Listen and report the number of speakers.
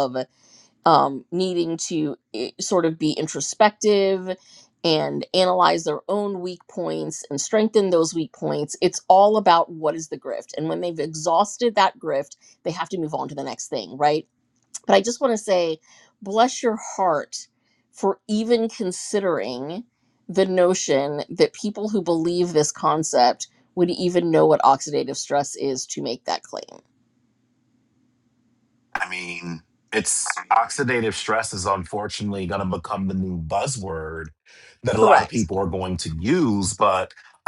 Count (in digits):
2